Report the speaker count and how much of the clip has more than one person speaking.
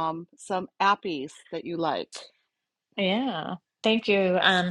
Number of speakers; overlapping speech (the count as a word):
two, no overlap